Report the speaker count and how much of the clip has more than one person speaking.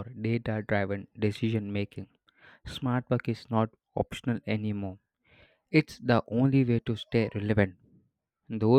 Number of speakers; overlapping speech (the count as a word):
one, no overlap